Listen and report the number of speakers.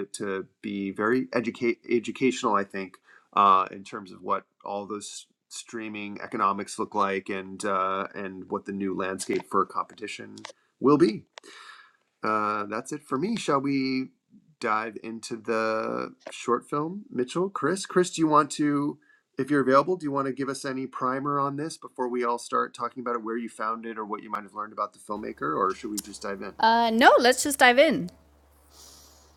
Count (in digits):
2